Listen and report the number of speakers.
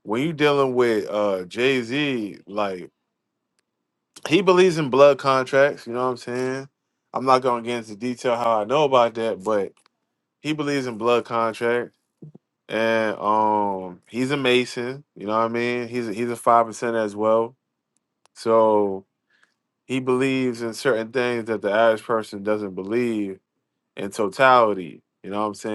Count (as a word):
one